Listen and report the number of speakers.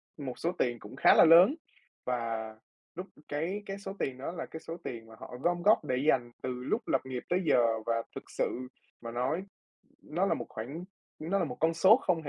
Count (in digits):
1